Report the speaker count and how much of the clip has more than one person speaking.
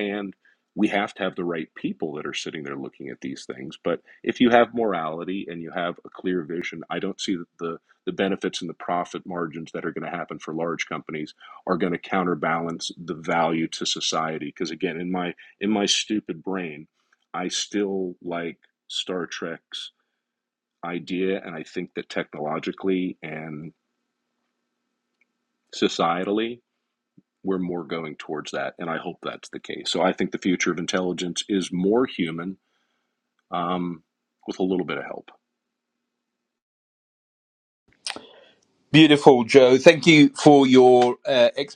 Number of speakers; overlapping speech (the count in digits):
2, no overlap